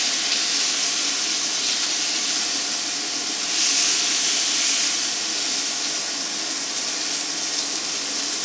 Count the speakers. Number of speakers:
zero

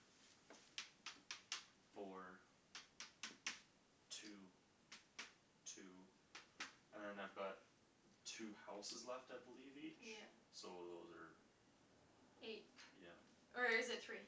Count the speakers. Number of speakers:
two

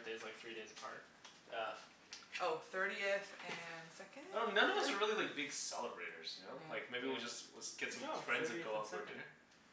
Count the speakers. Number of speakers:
three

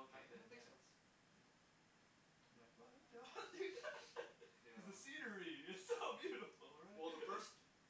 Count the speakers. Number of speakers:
two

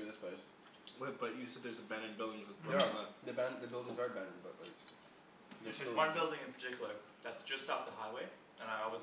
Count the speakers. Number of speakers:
three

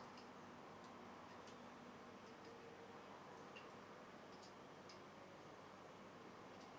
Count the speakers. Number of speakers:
zero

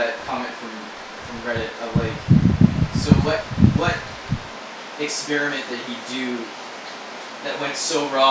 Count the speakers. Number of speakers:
one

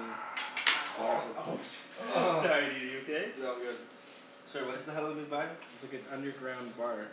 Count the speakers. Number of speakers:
three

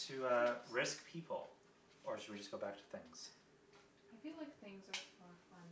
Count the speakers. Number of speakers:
two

